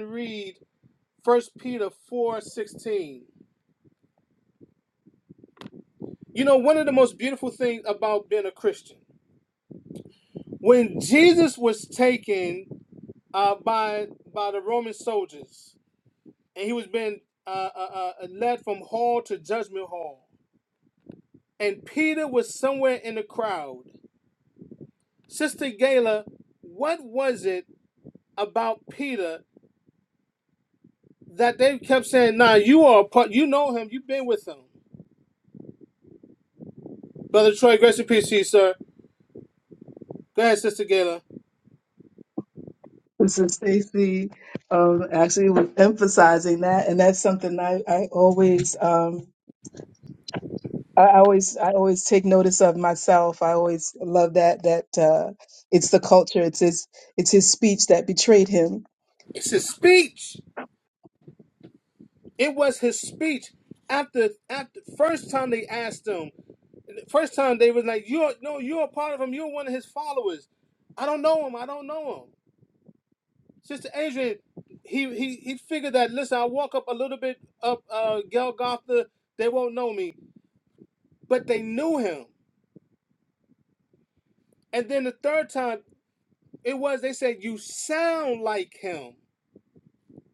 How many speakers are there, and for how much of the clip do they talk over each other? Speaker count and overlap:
2, no overlap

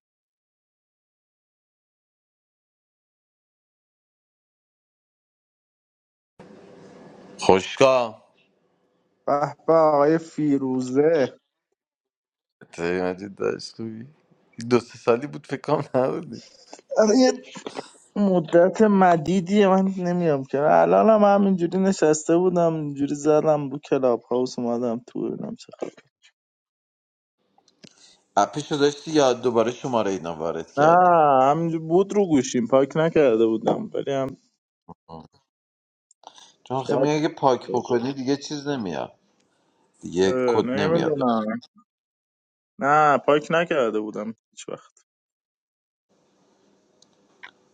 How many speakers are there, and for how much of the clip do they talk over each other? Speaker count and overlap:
2, about 3%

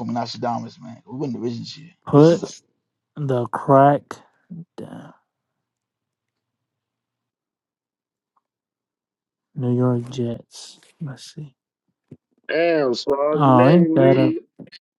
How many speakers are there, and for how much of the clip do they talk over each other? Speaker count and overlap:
3, about 9%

